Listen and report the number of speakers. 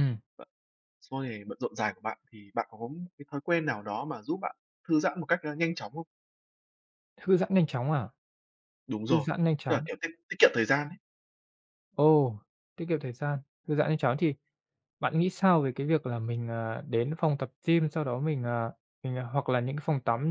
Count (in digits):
2